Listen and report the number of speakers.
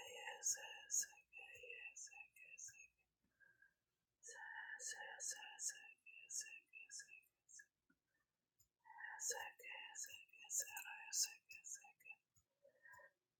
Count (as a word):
zero